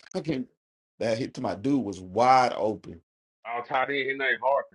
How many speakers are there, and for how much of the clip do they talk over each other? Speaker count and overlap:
2, about 5%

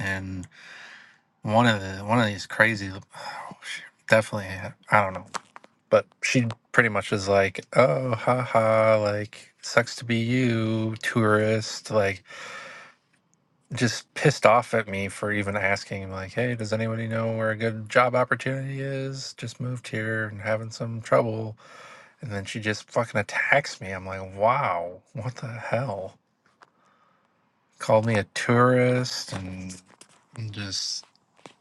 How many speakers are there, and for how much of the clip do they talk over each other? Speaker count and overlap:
1, no overlap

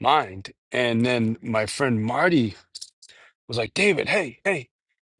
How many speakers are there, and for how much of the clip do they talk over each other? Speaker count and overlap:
1, no overlap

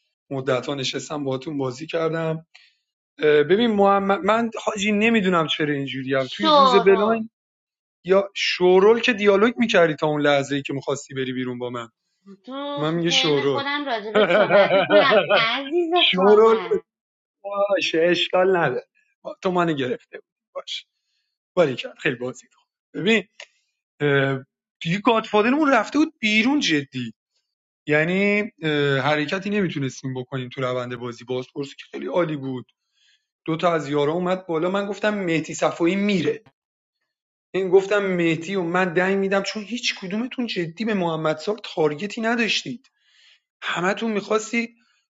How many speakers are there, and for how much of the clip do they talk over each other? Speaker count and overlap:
2, about 6%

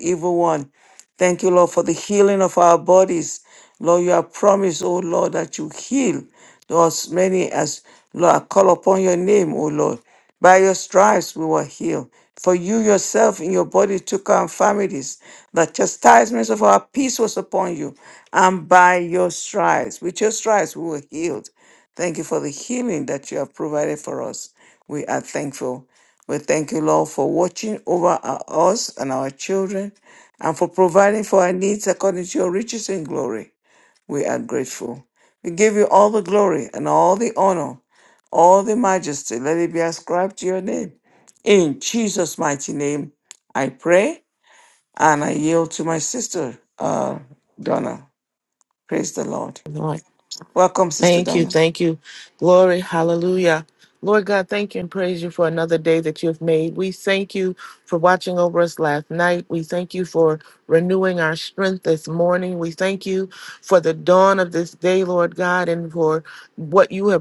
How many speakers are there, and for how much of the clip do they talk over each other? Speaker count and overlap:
2, about 1%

